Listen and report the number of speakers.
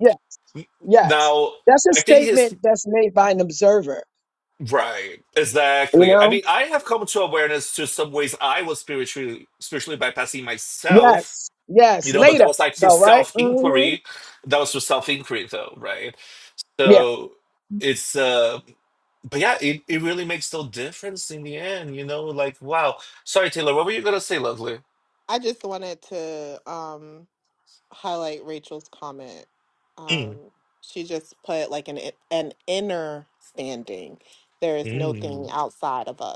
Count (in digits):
3